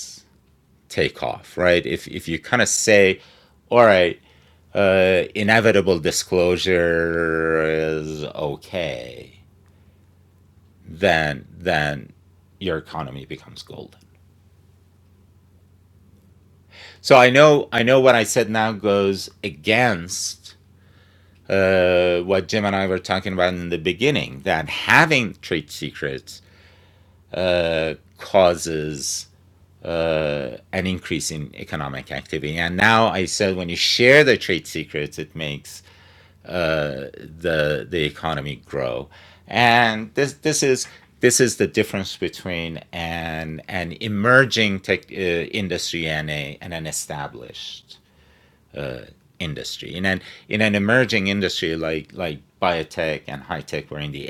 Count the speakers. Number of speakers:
one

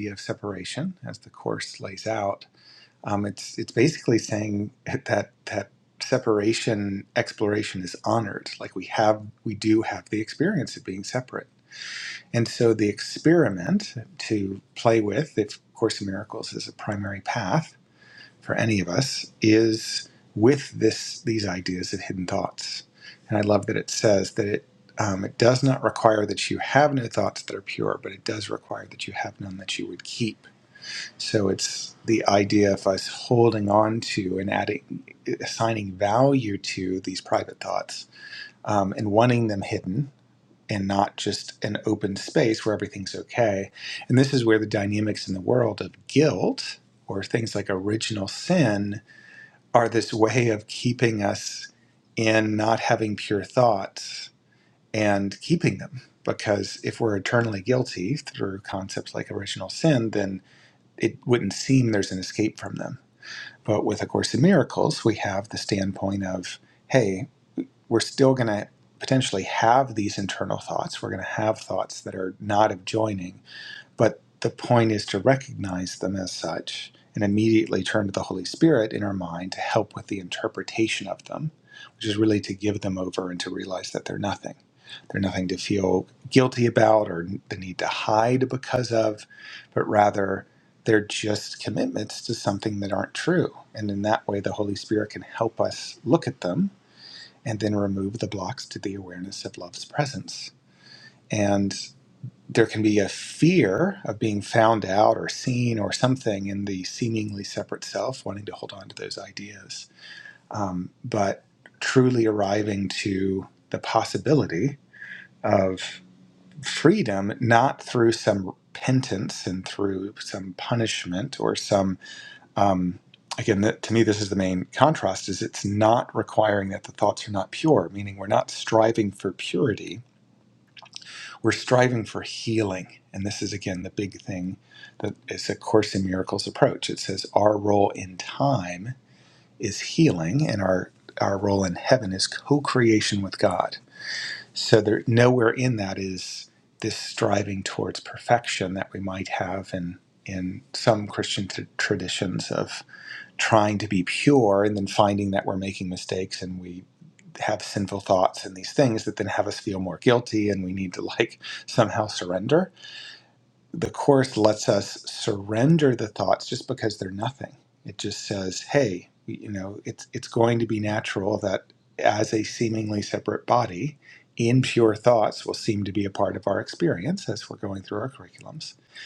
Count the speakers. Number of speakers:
one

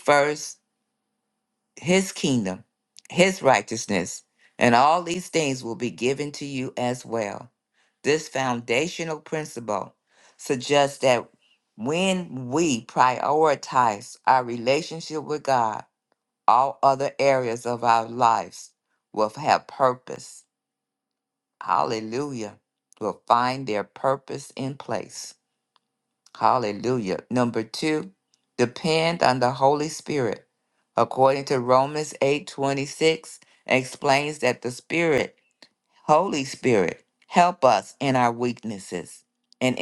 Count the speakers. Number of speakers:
one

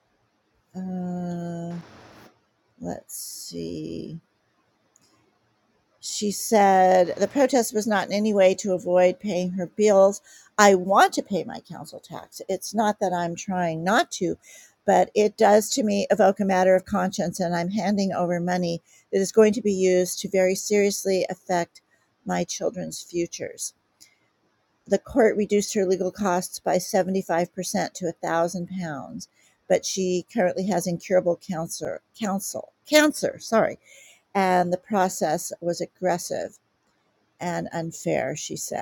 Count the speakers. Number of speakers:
one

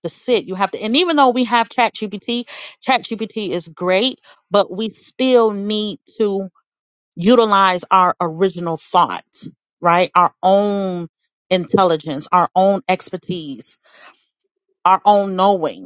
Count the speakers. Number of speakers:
one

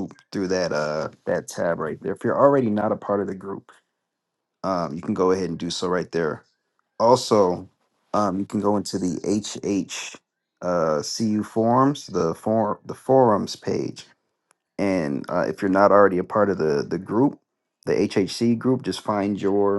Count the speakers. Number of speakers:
one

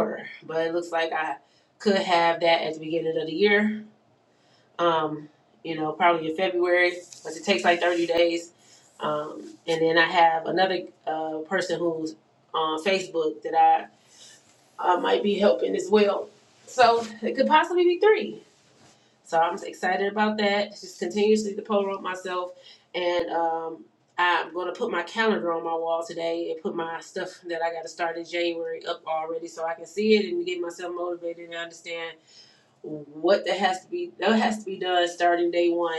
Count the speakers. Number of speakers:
one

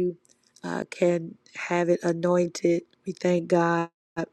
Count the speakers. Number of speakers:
one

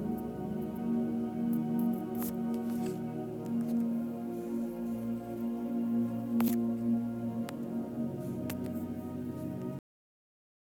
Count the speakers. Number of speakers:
zero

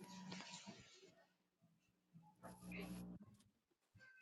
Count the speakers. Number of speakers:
zero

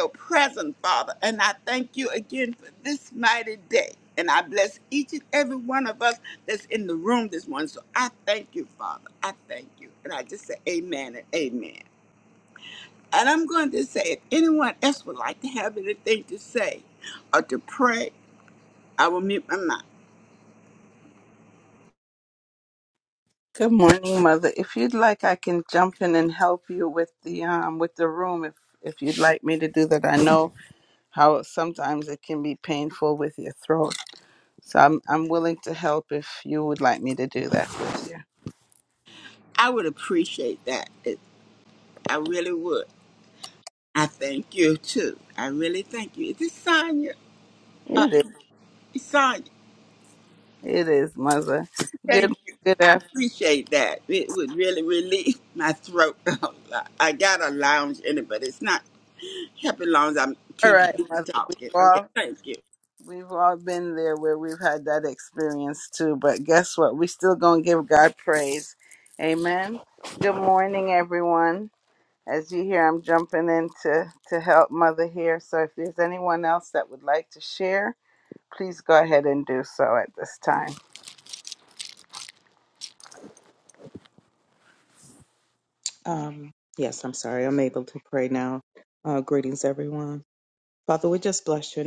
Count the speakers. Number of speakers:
three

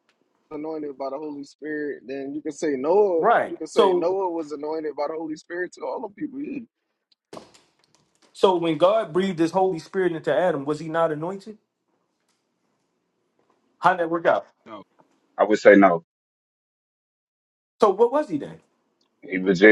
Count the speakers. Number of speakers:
three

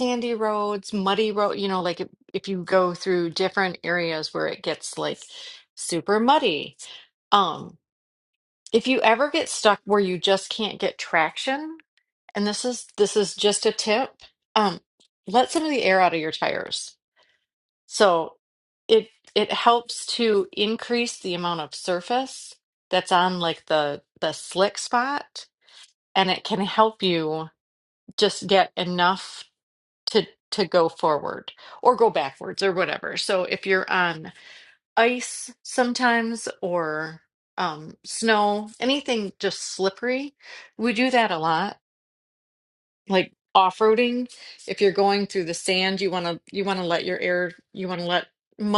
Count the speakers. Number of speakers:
one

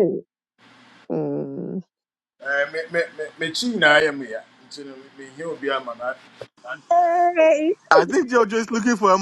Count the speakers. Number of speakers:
three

